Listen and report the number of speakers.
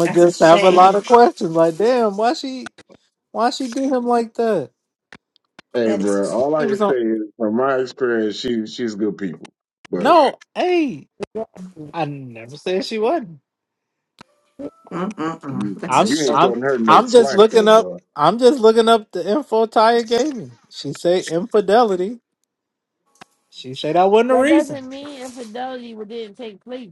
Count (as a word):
four